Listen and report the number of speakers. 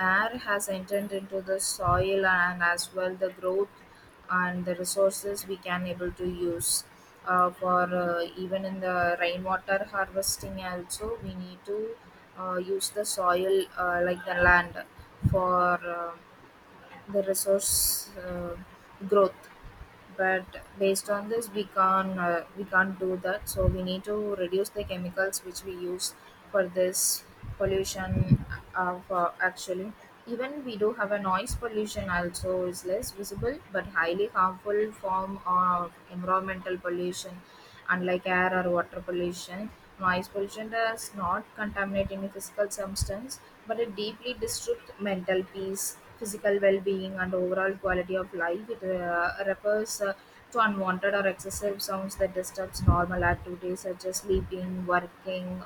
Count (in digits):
1